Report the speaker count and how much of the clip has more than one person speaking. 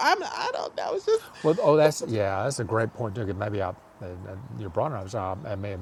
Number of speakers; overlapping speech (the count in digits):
2, no overlap